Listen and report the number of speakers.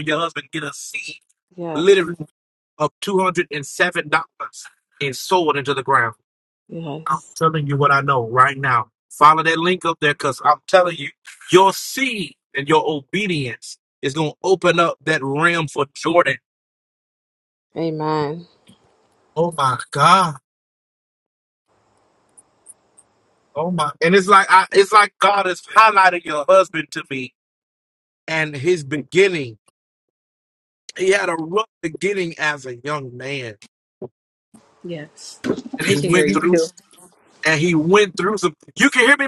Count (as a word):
two